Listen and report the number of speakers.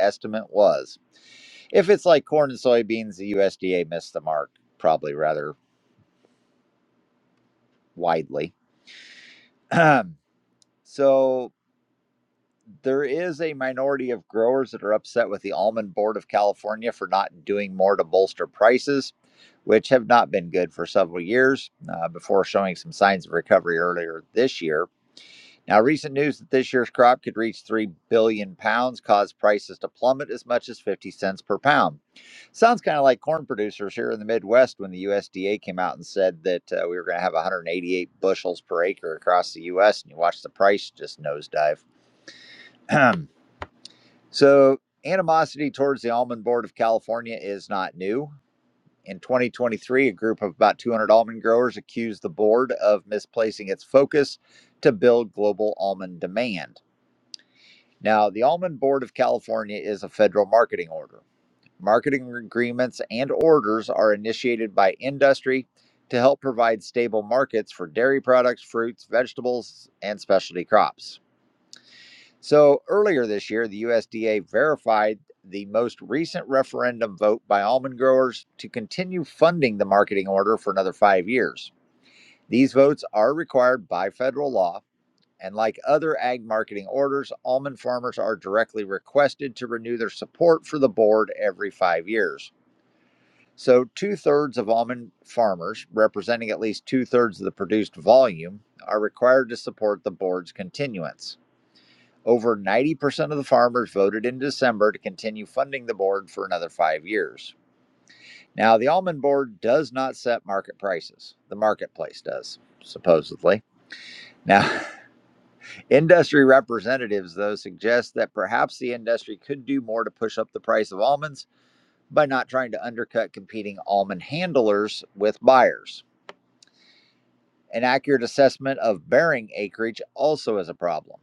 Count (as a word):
one